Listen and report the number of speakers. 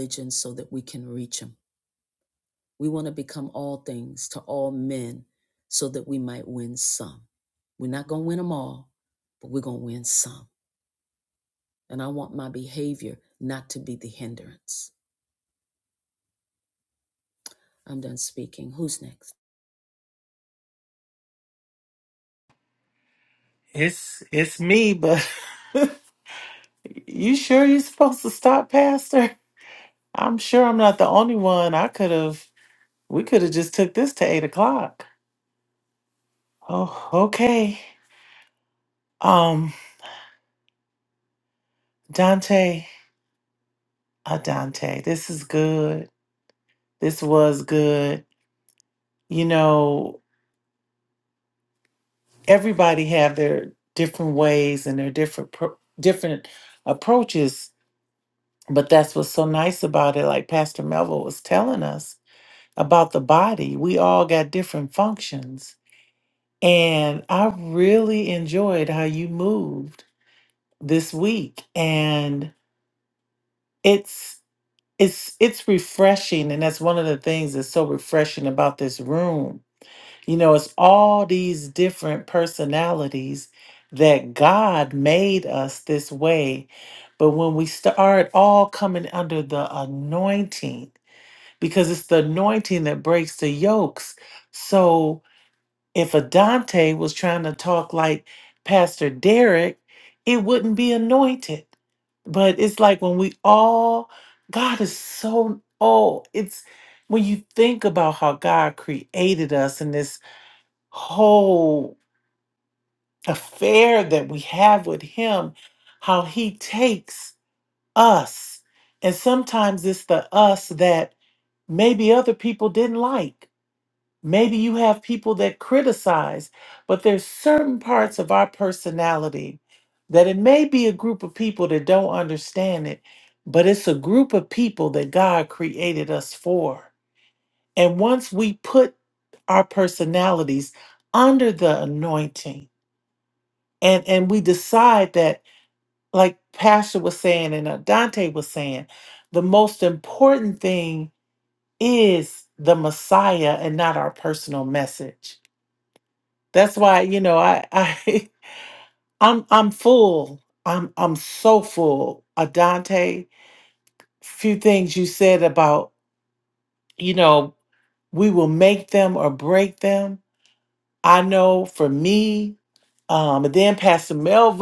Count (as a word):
two